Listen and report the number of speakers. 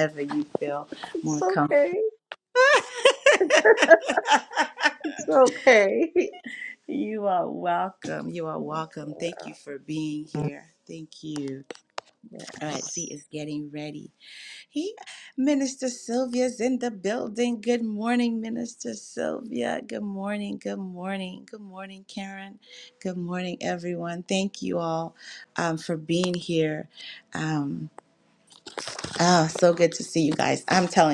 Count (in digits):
2